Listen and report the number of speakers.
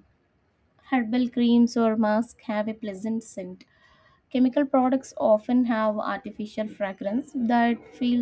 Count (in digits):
1